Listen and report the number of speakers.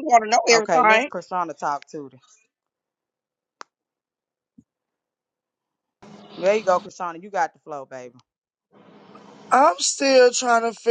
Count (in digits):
3